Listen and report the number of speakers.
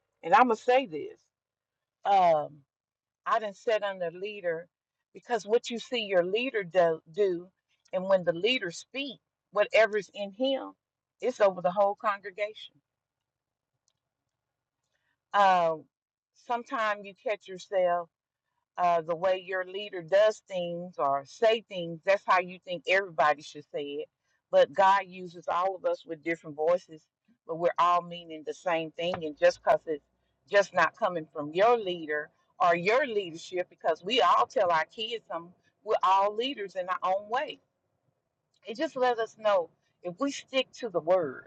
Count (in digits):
1